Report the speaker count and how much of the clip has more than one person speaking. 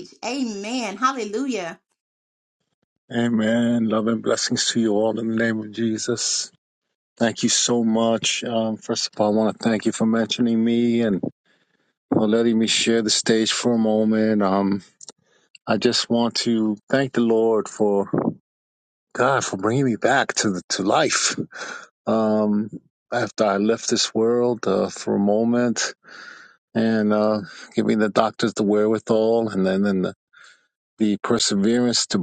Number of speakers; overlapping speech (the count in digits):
2, no overlap